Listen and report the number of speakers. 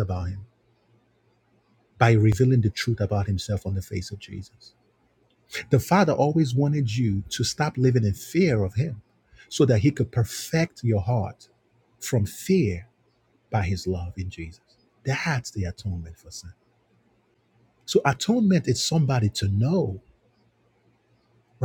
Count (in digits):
1